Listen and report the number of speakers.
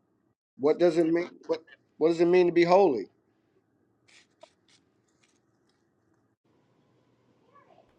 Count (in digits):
1